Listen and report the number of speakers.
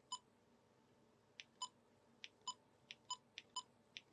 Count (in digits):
0